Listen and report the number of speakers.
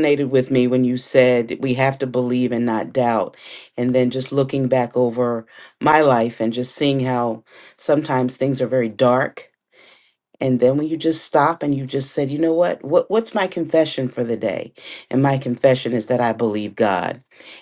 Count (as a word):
one